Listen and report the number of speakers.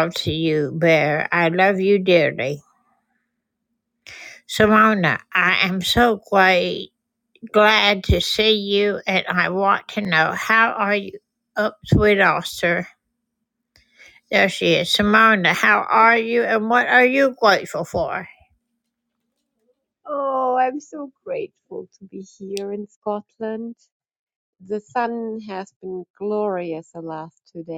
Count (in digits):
2